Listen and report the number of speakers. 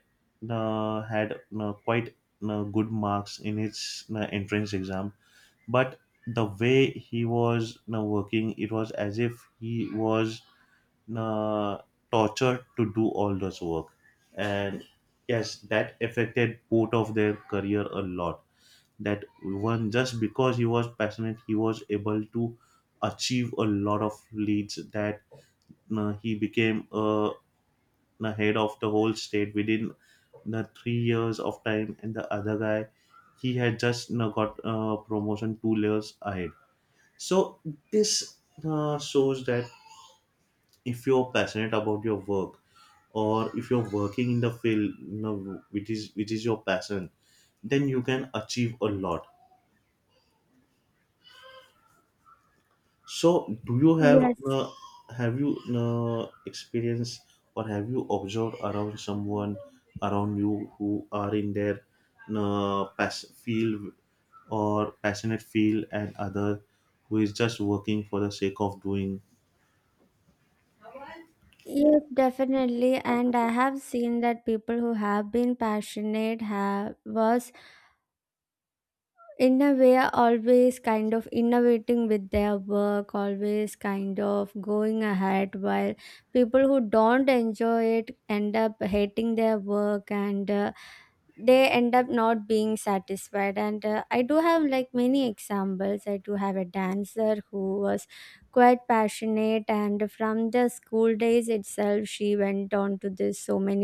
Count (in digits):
2